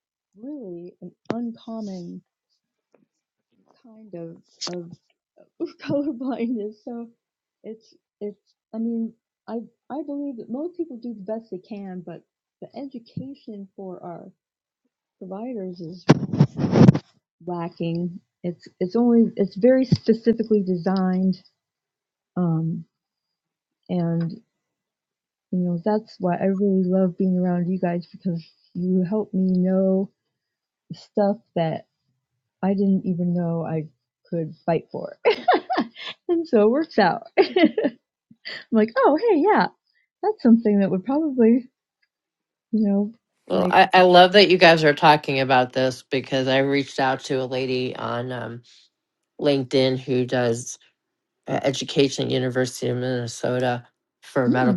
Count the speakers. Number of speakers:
2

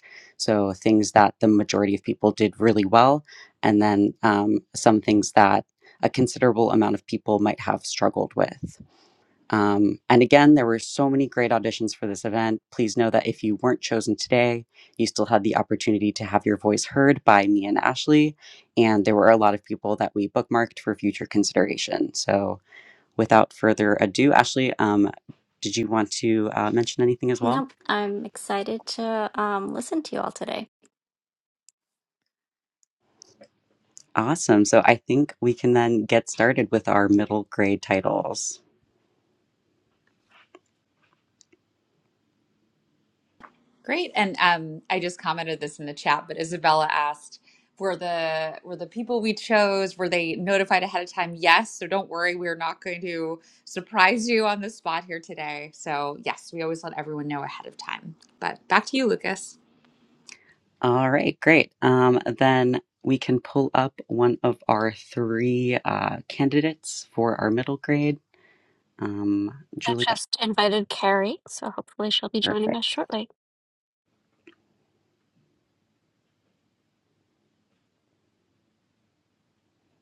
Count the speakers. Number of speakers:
4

